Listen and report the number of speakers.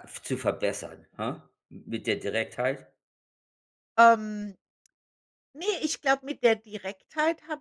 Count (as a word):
two